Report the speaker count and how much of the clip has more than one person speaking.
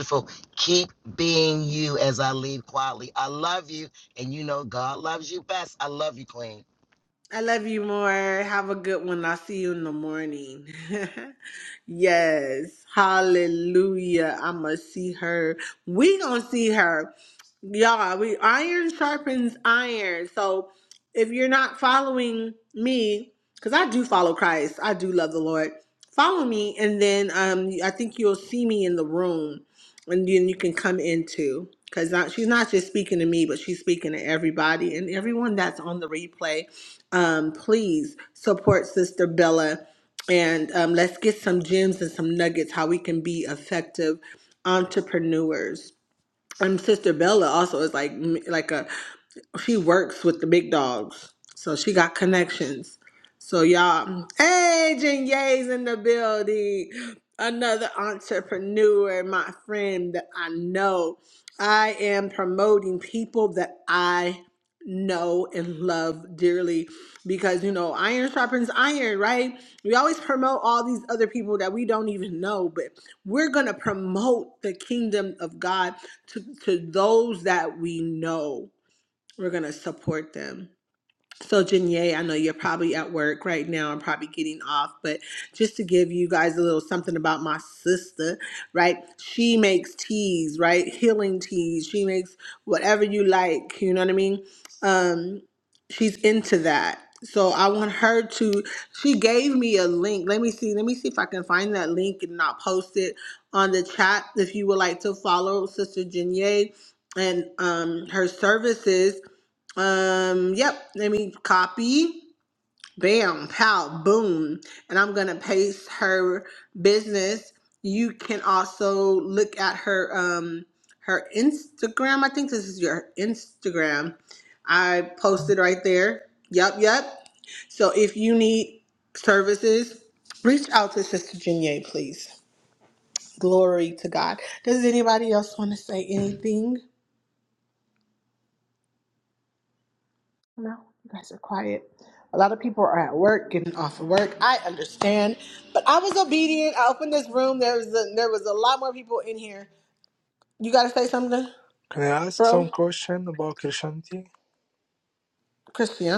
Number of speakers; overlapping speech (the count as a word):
three, under 1%